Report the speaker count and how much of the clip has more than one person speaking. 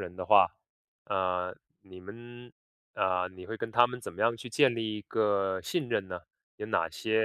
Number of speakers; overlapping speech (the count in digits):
1, no overlap